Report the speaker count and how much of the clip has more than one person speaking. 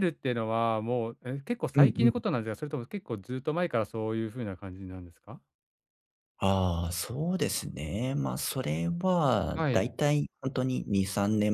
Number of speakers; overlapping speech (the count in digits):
2, about 6%